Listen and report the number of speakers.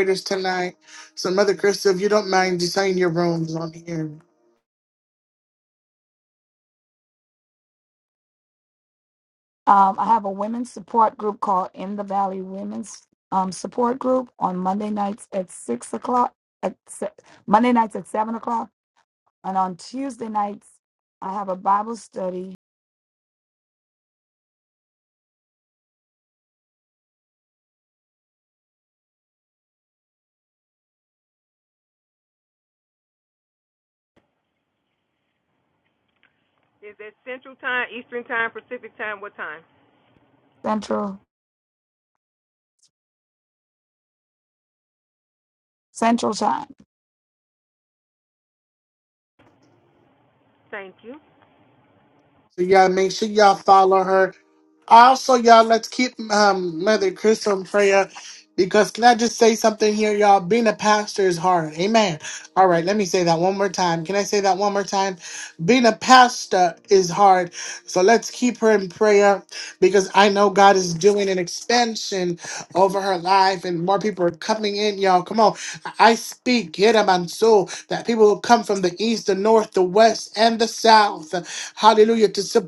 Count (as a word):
three